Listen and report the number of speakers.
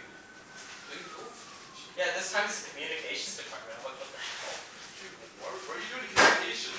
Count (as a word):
two